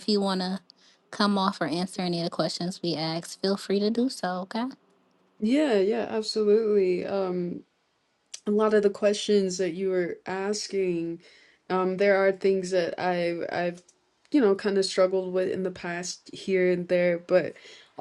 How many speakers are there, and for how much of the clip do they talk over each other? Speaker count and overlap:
2, no overlap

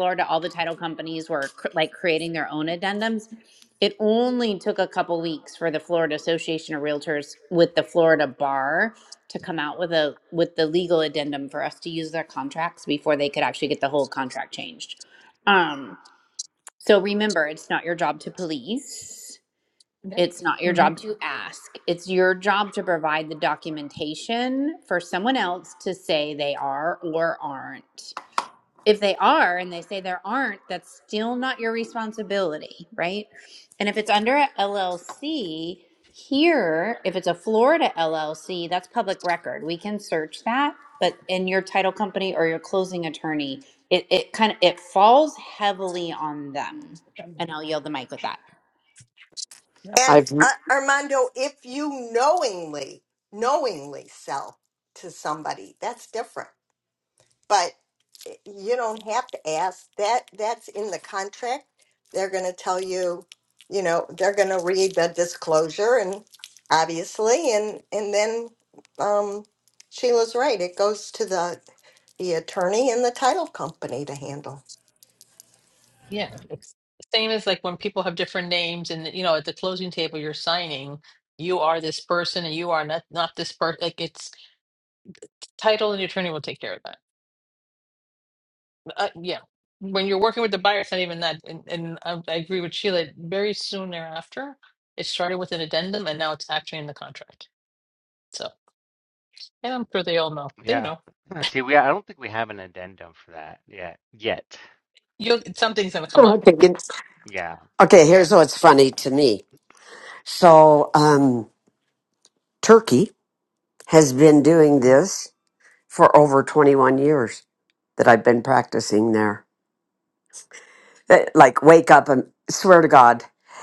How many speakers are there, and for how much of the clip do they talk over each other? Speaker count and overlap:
5, about 1%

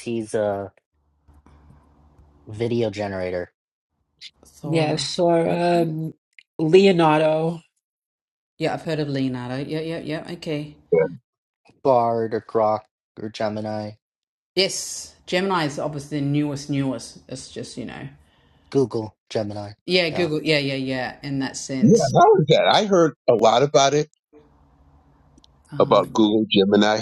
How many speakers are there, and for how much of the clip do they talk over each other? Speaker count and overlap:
4, about 6%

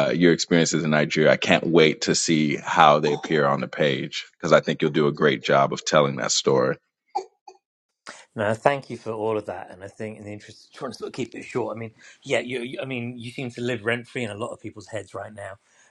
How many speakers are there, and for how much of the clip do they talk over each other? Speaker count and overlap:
2, no overlap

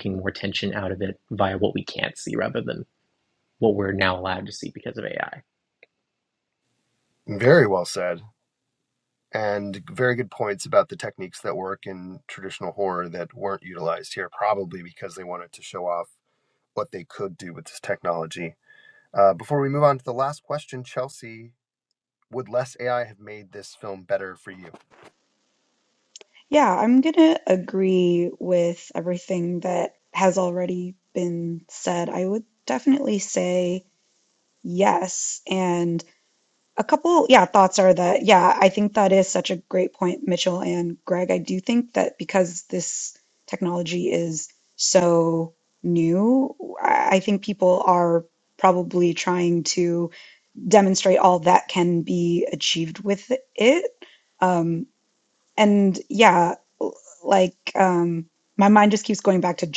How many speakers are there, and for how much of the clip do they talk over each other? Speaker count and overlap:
3, no overlap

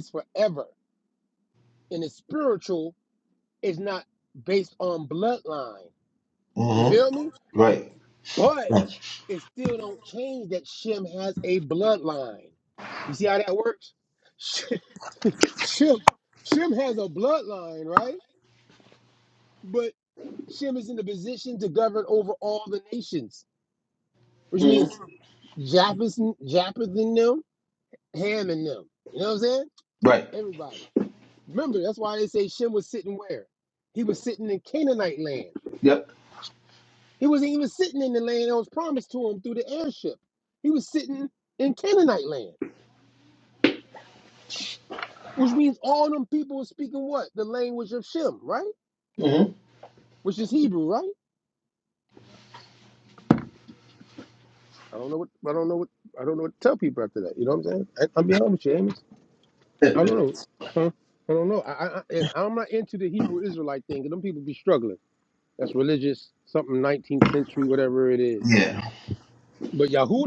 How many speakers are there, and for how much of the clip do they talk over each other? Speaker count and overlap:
2, about 1%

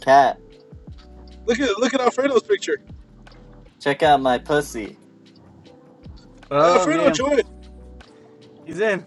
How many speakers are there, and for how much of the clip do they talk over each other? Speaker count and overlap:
3, about 6%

